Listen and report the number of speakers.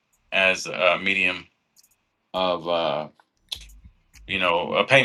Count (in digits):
1